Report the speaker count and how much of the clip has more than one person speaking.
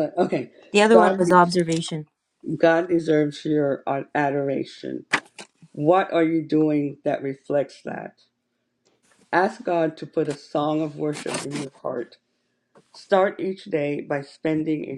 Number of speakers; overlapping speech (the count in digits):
2, about 3%